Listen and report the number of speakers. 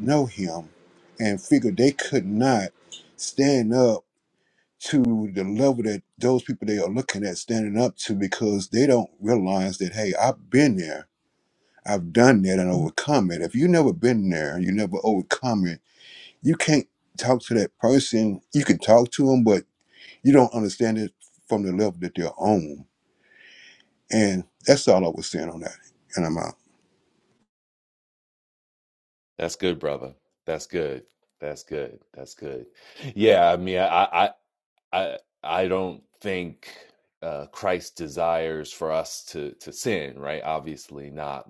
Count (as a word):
two